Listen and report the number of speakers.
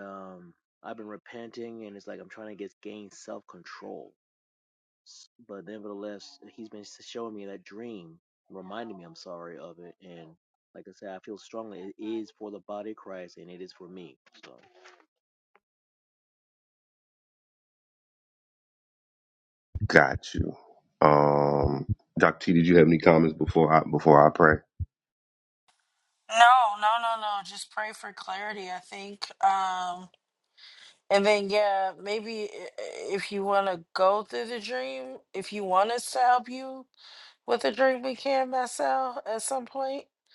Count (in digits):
3